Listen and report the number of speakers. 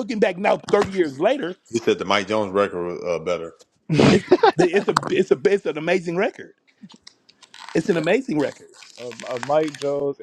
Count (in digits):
3